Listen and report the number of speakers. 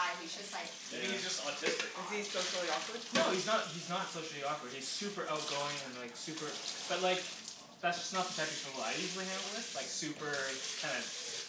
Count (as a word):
four